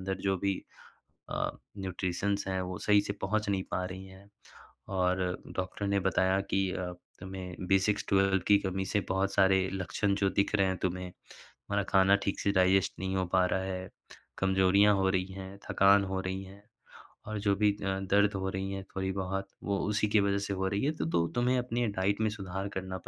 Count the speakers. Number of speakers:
1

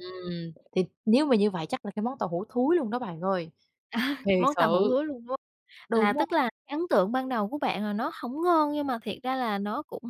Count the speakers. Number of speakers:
2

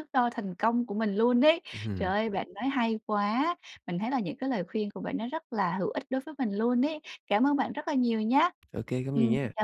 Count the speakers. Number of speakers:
2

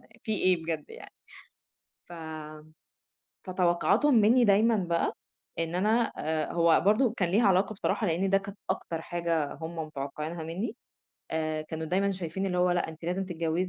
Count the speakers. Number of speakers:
1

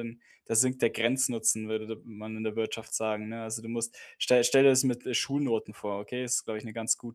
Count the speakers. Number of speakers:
1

